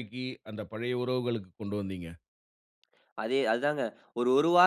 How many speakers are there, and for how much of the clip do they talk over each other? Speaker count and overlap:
2, no overlap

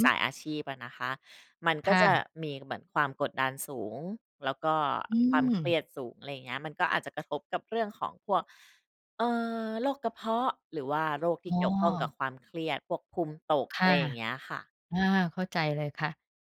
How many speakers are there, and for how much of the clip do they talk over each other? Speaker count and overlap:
2, about 7%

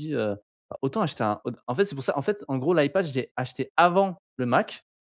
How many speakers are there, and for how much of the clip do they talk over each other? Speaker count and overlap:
1, no overlap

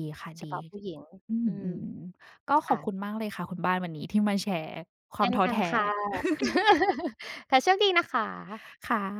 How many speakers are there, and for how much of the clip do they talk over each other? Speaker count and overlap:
2, about 11%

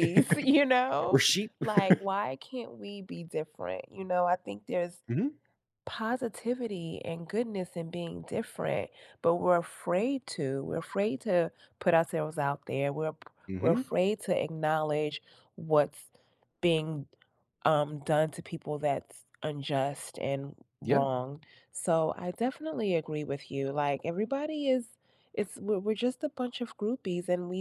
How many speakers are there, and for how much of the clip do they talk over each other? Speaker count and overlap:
2, about 2%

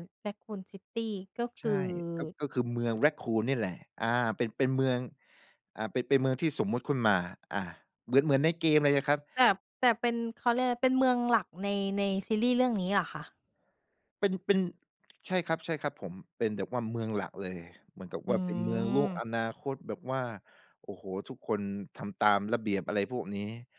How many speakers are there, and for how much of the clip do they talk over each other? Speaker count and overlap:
2, about 2%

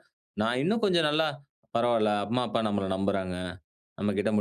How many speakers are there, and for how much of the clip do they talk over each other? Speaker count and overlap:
1, no overlap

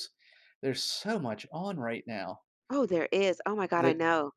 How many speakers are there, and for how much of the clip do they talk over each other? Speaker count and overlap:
2, about 5%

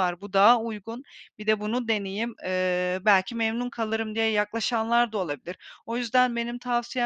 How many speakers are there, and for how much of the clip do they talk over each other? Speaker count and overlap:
1, no overlap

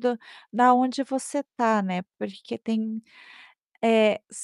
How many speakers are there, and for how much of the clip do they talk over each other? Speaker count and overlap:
1, no overlap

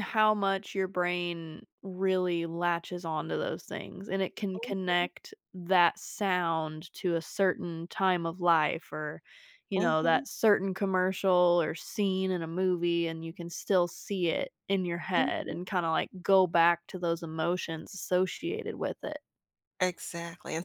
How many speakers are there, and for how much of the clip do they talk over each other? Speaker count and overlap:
2, about 5%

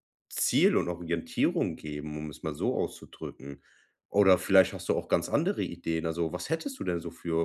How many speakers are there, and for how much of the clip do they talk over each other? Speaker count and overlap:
1, no overlap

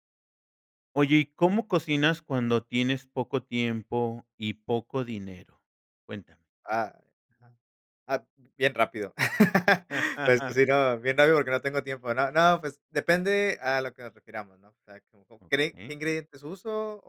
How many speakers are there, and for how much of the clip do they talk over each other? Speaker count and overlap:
2, about 1%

